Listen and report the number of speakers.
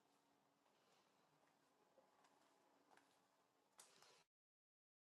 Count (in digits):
0